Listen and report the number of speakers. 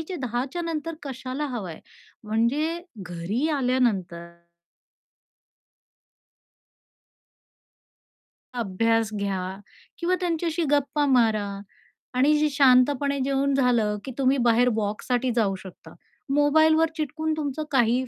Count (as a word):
one